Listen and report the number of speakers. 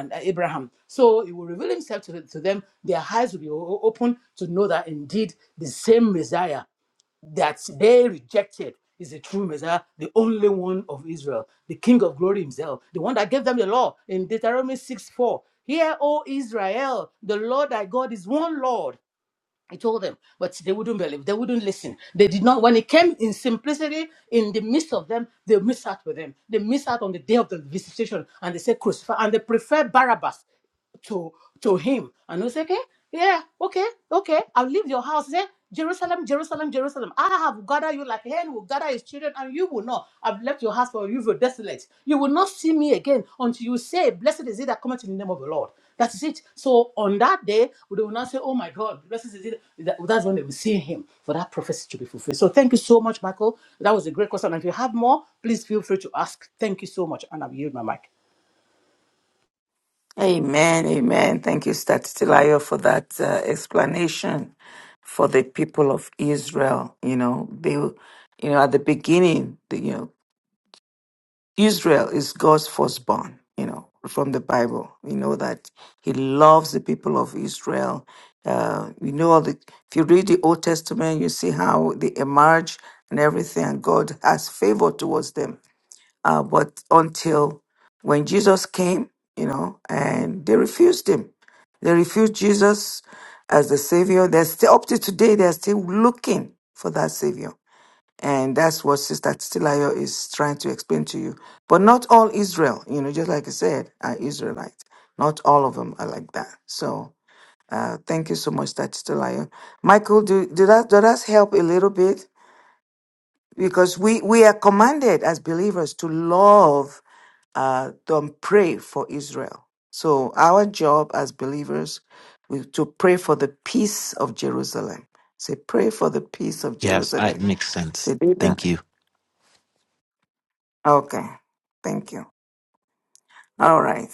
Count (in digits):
3